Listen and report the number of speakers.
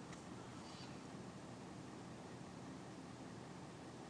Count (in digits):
0